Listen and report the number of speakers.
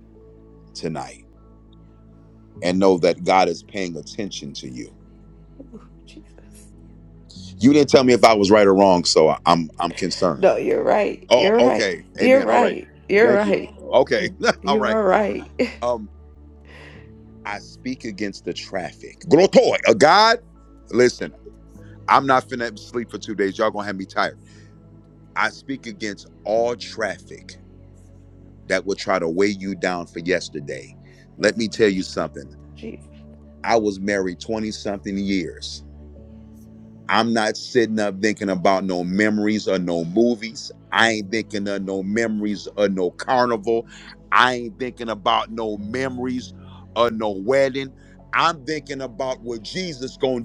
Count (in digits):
2